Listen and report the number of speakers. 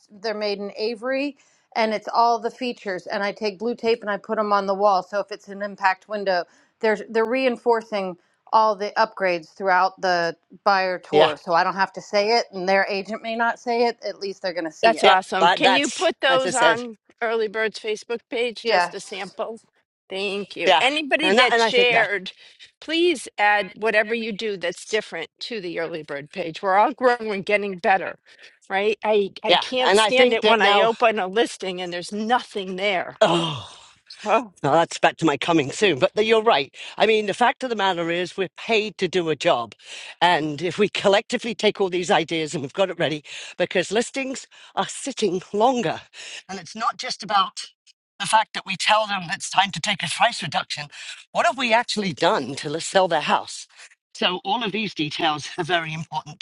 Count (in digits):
3